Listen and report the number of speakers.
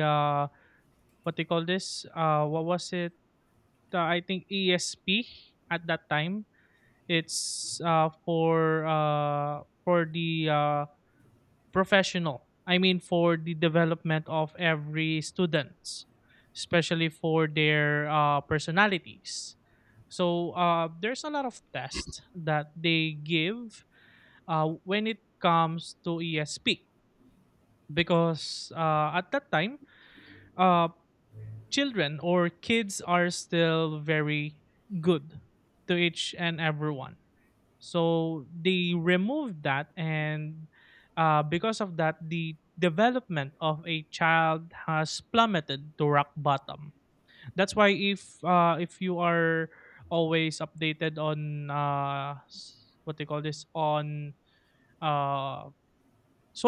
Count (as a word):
one